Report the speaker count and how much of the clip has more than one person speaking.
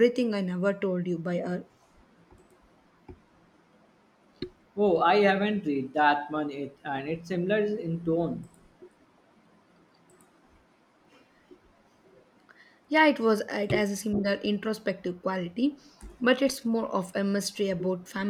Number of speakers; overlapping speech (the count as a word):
two, no overlap